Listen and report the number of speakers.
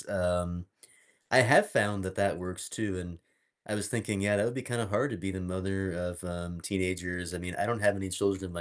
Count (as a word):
one